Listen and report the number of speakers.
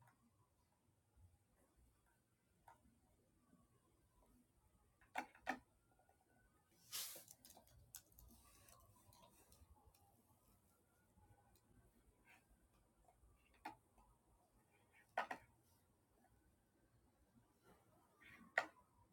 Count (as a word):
zero